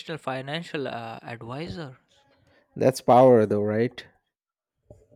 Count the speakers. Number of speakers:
2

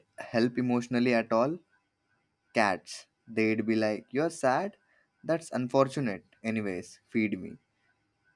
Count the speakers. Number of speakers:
1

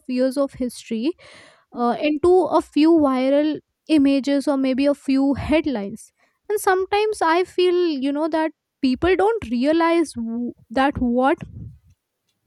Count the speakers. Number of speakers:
1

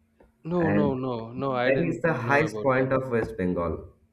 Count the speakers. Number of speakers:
2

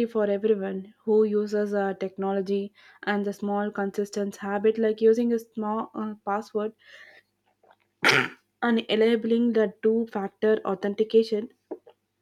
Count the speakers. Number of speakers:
1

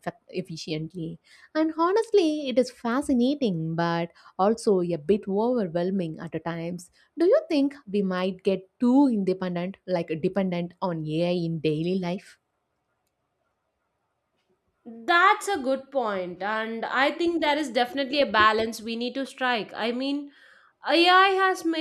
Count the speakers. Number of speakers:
2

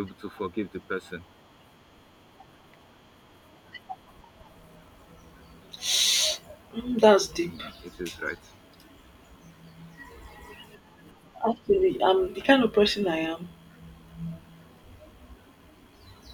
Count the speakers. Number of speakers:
2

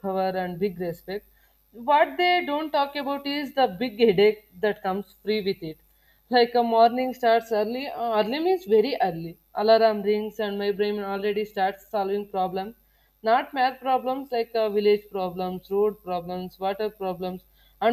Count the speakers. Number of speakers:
1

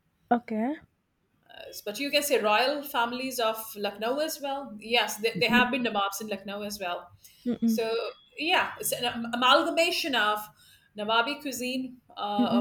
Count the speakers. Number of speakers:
2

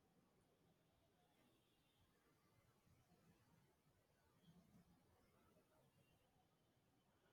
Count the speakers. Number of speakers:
0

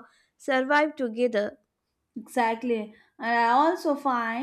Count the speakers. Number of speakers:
2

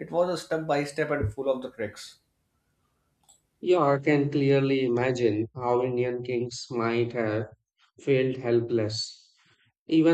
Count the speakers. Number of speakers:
2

